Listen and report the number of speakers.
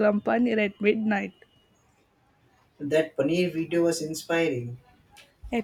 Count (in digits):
2